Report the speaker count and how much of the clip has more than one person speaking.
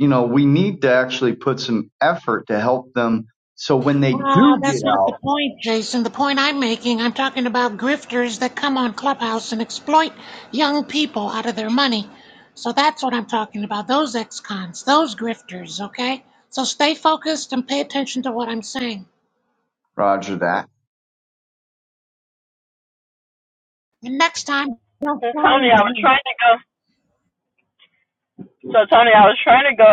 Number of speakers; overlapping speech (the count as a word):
three, about 6%